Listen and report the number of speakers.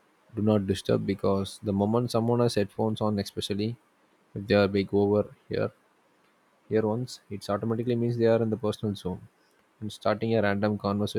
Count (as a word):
one